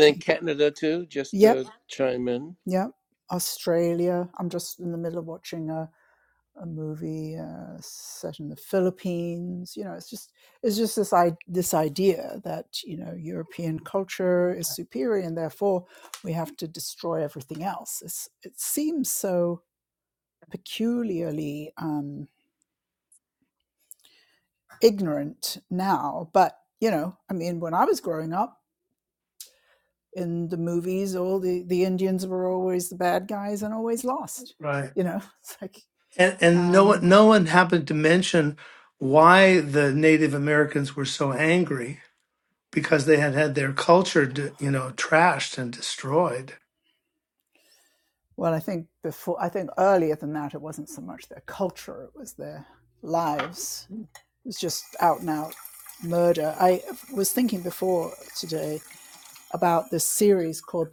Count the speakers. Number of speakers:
three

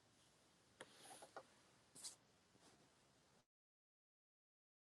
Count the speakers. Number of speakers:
zero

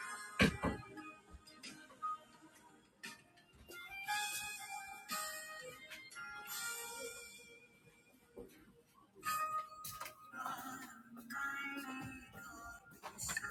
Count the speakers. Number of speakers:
zero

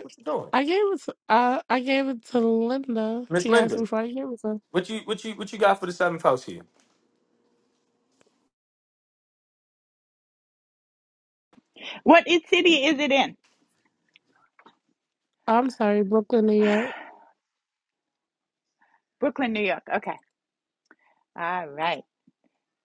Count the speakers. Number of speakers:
three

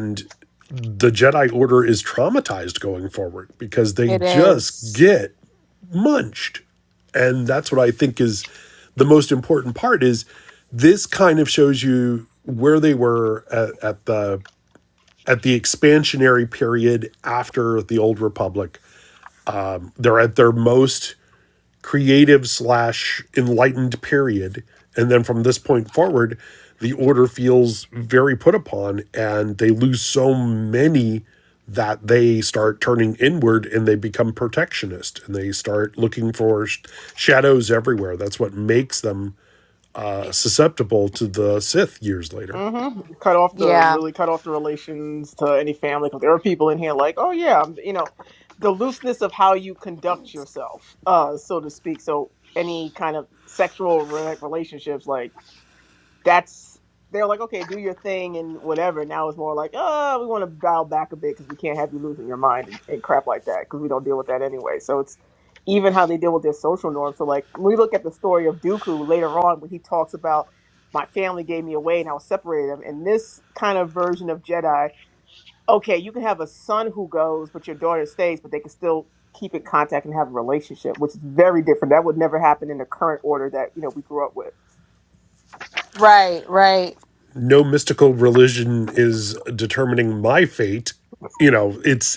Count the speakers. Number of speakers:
three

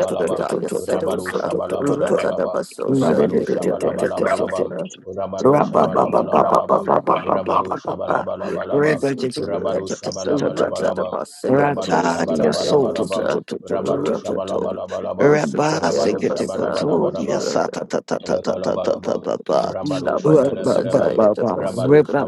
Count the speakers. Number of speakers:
three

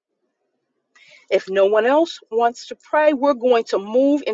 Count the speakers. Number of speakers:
one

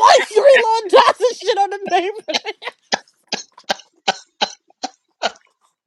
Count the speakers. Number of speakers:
one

